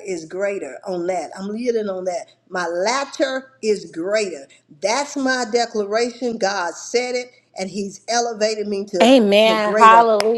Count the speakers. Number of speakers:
two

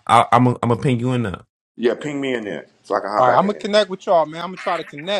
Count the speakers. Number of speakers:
three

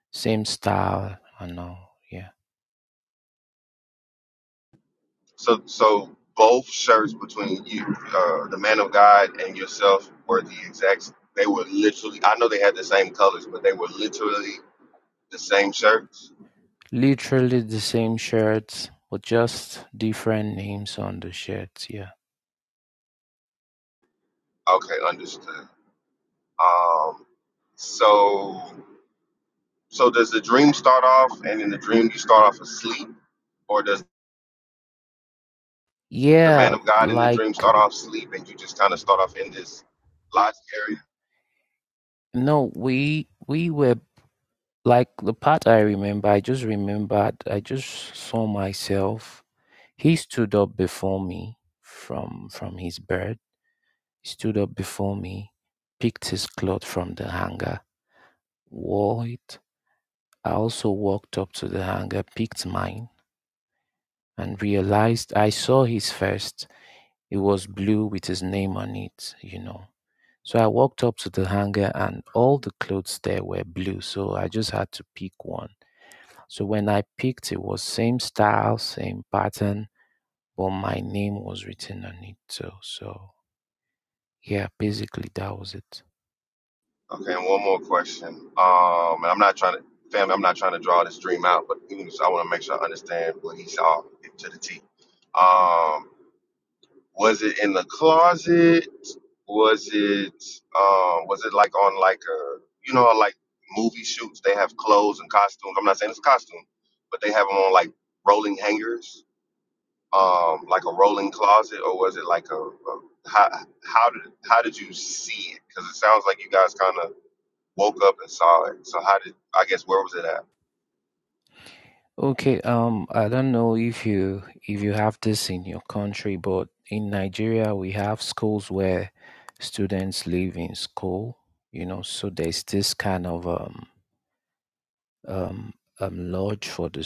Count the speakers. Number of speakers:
two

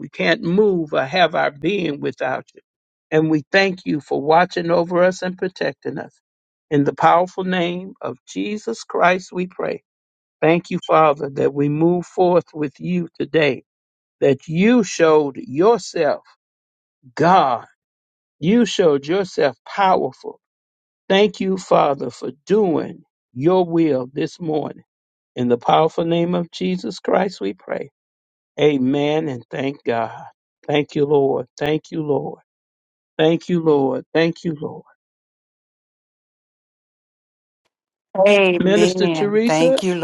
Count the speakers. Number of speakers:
two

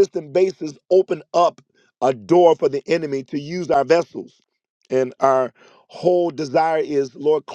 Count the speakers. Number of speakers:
one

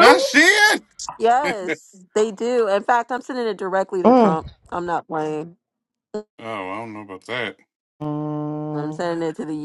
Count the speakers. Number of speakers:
three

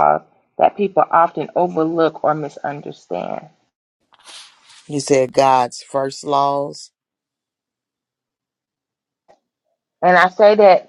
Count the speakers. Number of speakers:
two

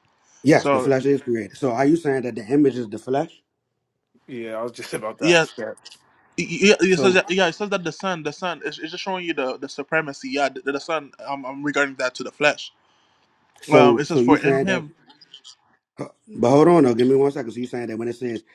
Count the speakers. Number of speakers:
three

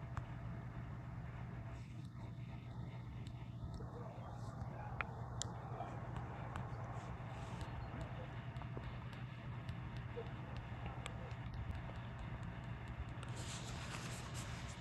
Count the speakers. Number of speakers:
zero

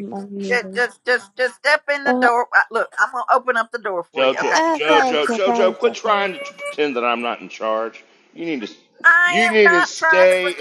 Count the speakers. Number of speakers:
three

